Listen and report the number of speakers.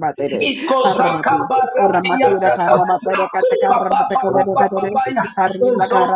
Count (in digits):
2